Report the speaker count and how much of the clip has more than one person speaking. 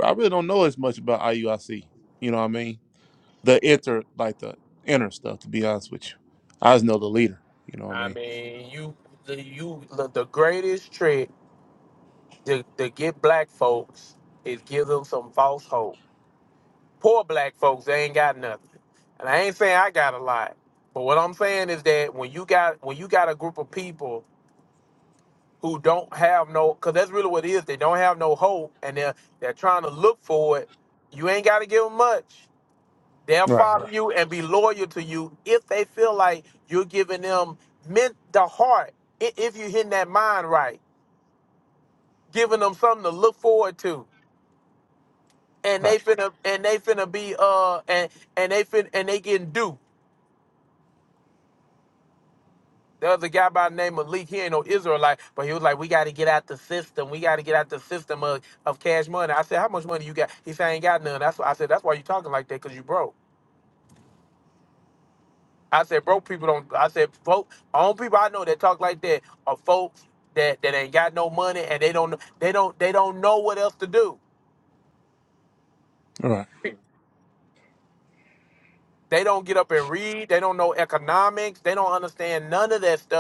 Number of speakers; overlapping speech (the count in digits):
2, about 1%